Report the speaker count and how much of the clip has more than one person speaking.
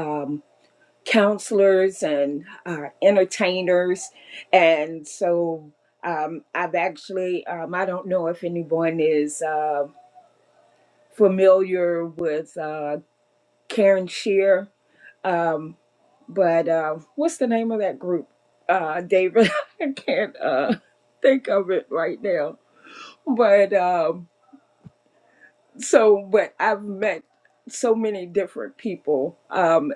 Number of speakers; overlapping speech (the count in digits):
1, no overlap